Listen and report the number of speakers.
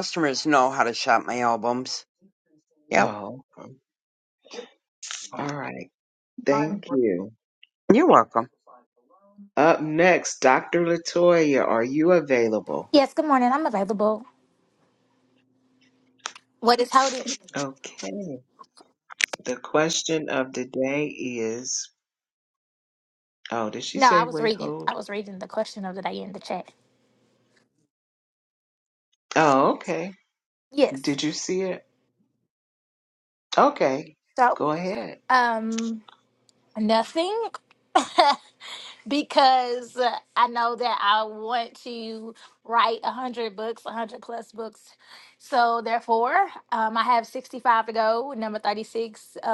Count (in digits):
3